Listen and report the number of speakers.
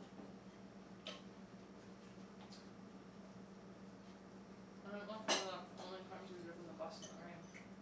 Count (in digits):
1